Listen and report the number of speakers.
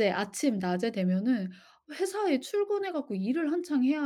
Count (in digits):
1